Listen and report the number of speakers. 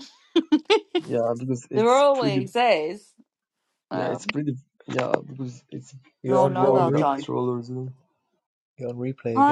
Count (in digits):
3